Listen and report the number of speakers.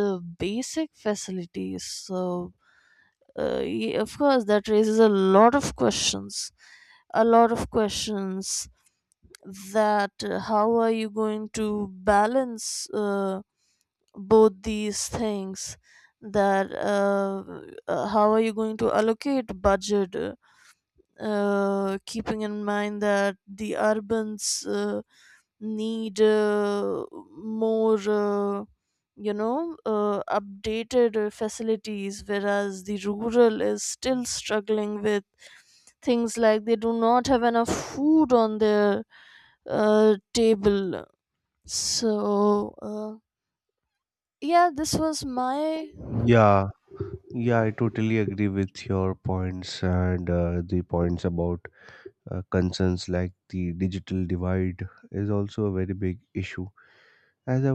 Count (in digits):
2